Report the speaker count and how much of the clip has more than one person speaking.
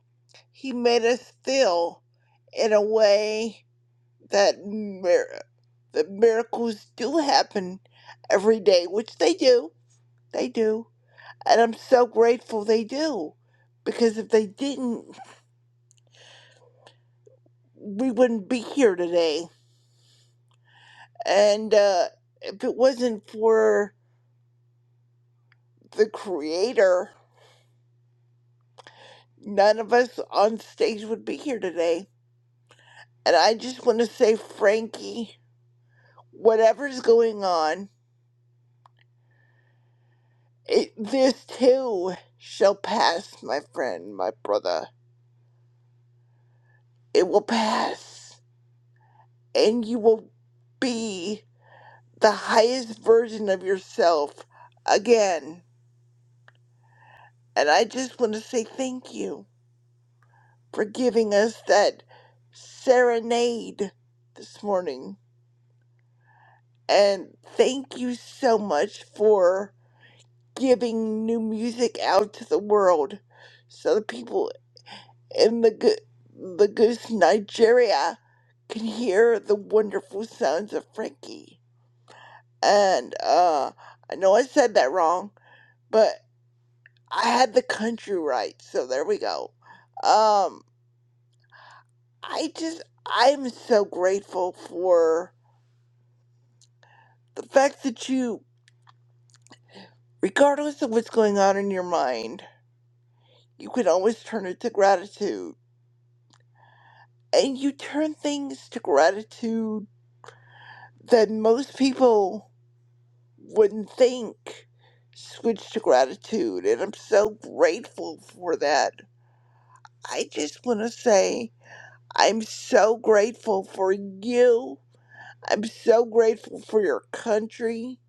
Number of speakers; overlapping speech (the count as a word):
one, no overlap